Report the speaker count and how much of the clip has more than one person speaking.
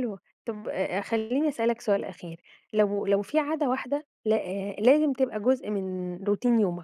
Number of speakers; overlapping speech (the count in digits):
1, no overlap